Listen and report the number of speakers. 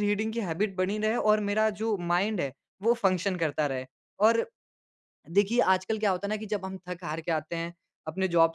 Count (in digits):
1